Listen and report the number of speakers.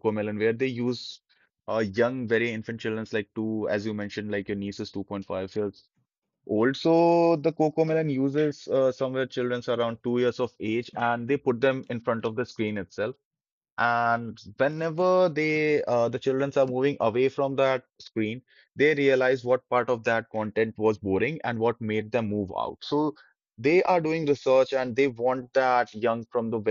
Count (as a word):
one